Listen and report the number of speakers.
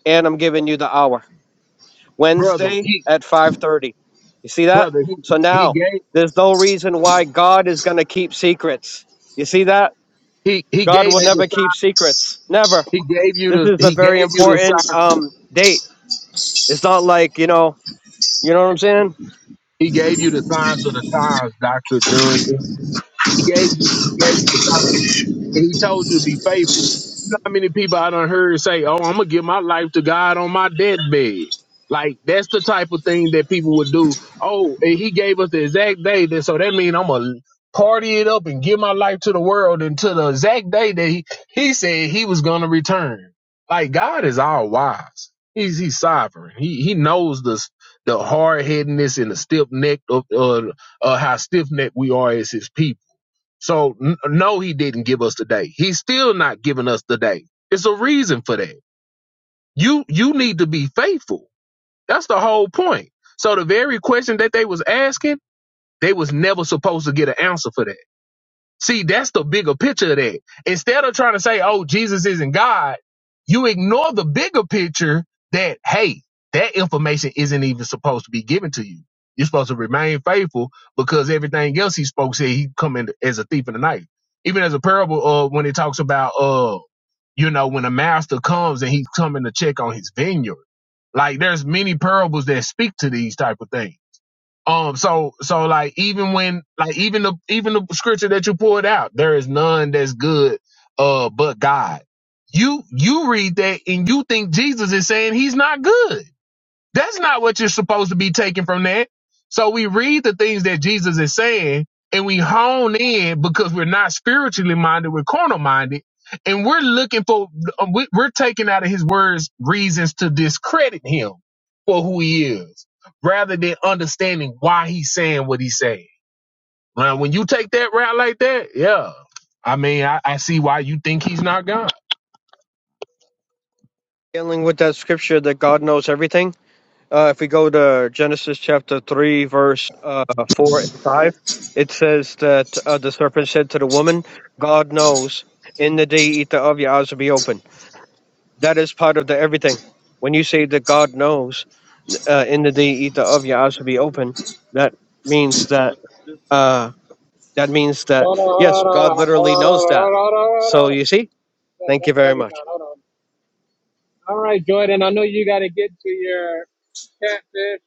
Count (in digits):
3